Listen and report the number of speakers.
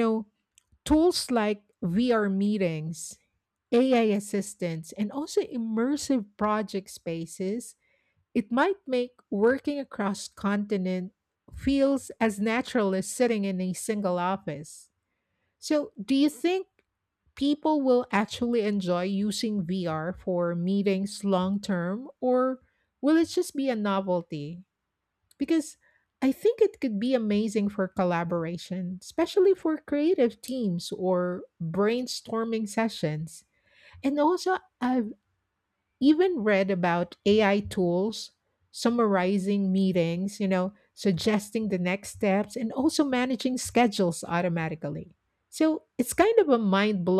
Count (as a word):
one